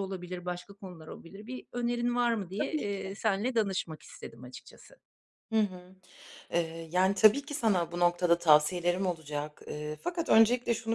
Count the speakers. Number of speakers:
two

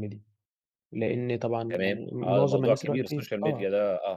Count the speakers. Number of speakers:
two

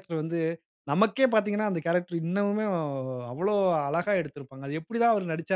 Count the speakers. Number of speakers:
one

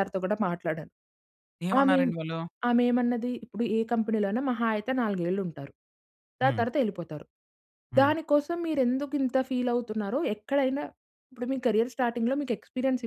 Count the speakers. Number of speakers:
two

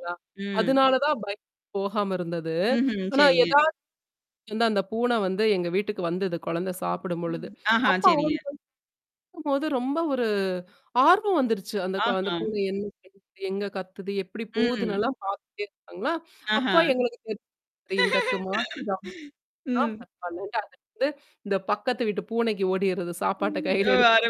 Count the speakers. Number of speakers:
two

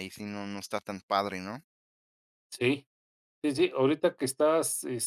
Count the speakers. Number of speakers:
two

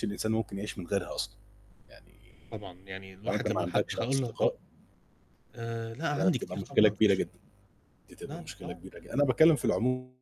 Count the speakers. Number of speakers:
two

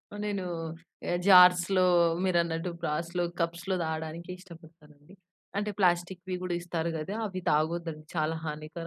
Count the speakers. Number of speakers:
one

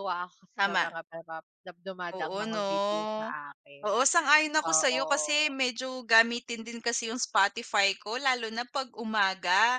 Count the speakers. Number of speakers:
two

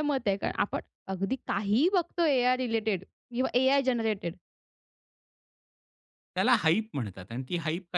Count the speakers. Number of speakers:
two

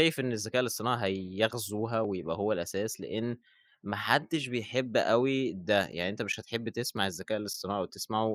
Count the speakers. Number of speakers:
one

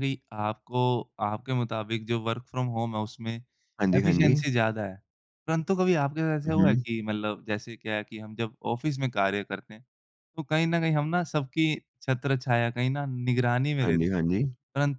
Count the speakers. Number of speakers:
two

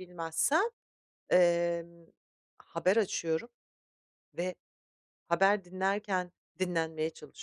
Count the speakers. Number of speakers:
one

